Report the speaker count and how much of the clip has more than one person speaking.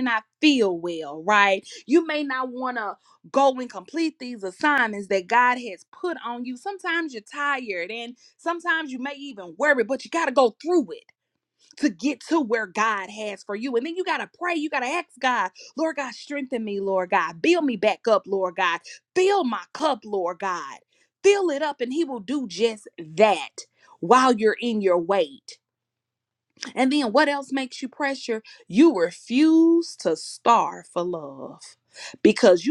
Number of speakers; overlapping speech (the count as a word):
one, no overlap